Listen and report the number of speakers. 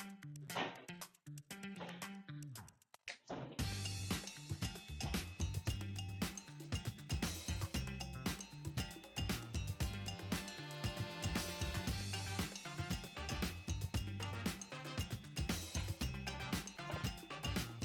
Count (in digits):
0